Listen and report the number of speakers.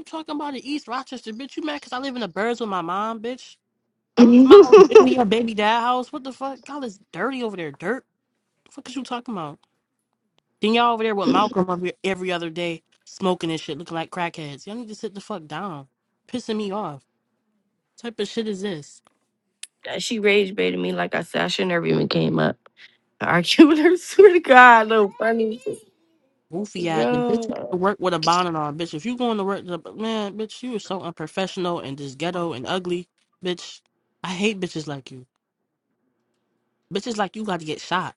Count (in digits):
2